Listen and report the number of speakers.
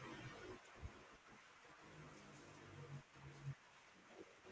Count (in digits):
0